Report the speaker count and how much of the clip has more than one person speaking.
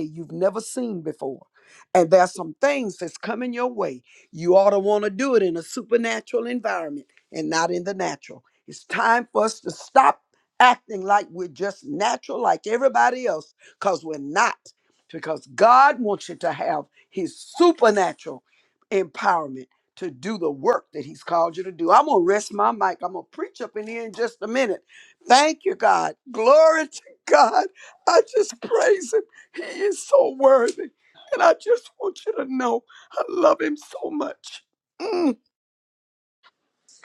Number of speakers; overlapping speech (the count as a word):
one, no overlap